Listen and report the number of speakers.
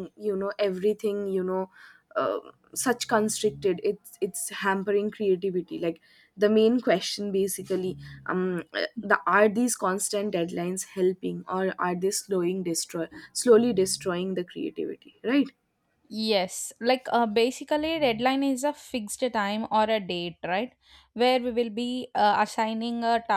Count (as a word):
two